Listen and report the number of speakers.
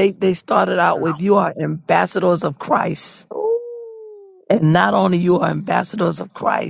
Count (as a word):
two